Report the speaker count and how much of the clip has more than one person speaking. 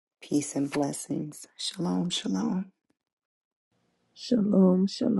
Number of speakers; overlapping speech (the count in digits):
2, no overlap